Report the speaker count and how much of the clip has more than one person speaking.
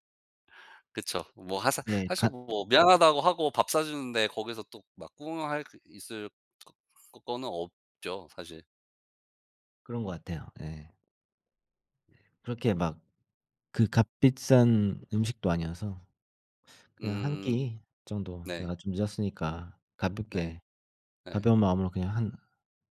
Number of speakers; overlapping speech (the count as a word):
two, about 7%